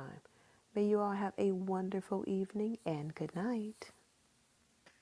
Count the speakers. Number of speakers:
1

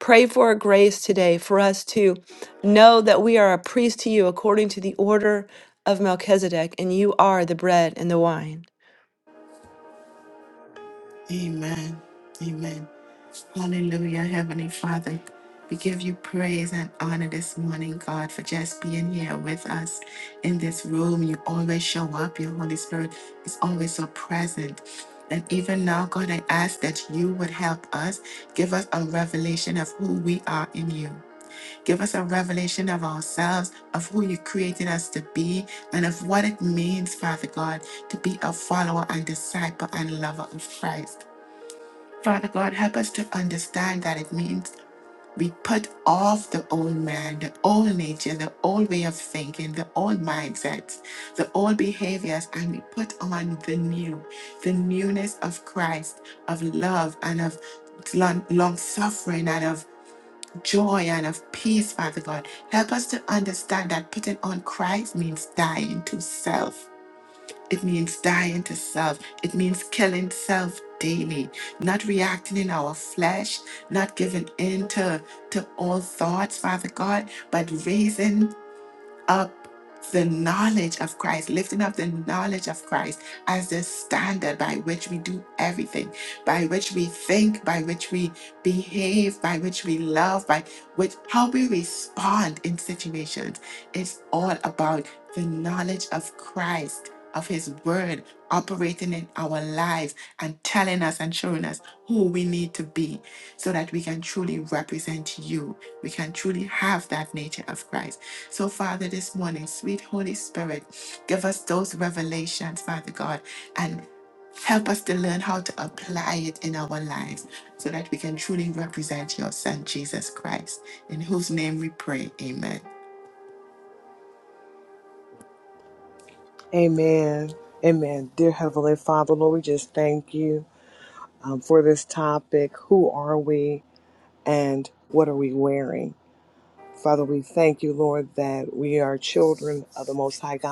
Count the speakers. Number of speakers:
3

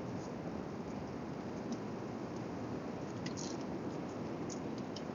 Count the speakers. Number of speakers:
0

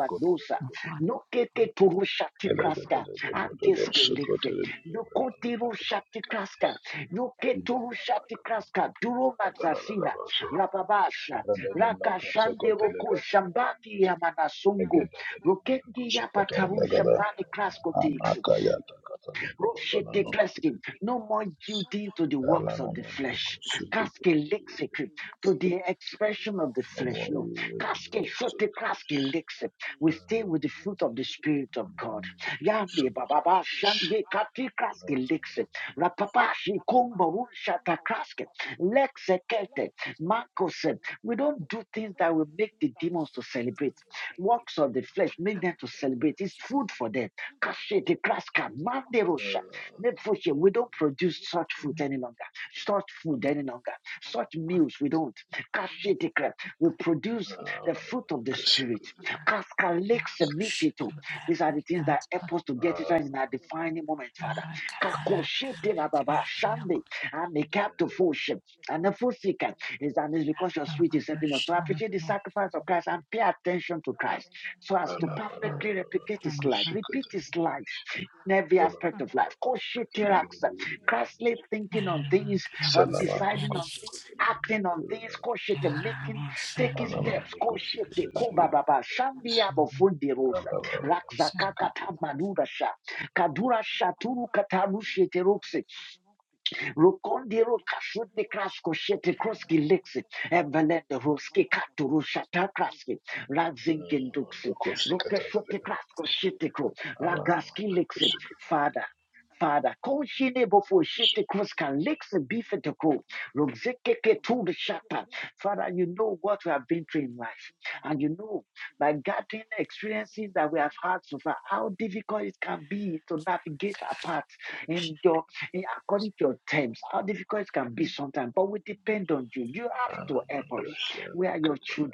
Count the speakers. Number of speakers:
2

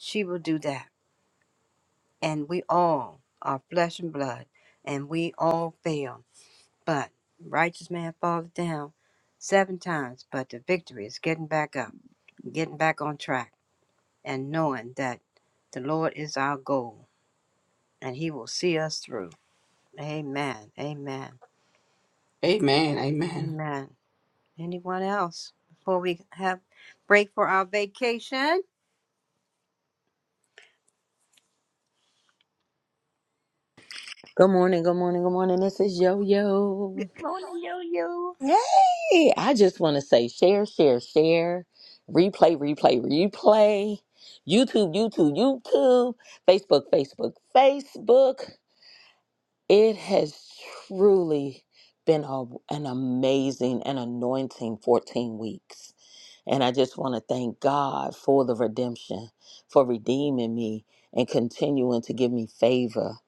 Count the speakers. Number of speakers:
3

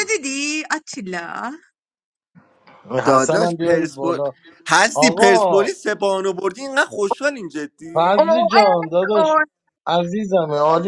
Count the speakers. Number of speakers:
3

